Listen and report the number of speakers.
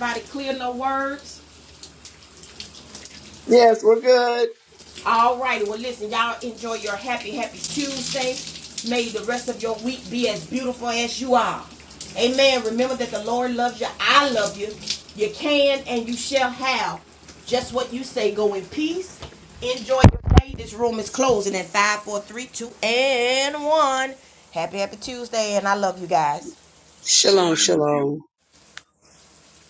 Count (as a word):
three